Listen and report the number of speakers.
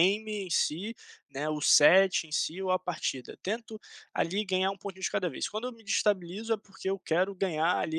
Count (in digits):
1